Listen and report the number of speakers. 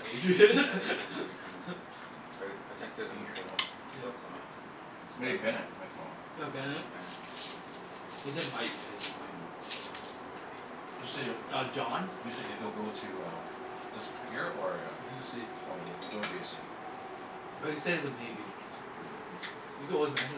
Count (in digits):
3